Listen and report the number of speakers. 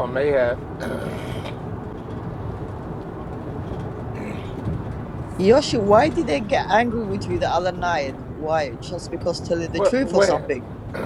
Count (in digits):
2